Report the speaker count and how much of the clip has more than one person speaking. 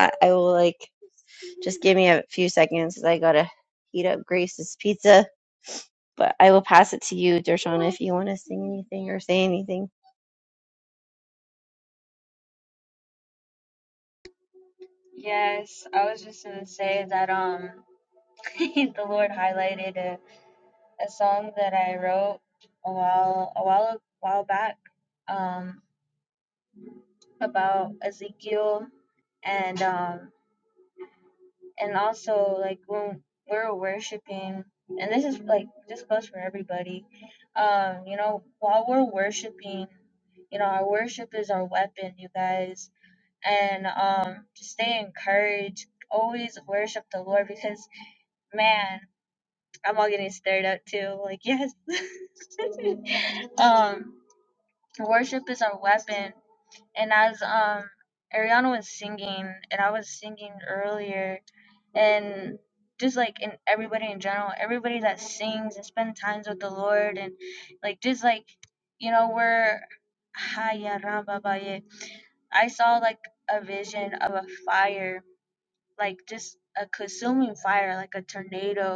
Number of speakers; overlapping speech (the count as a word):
two, no overlap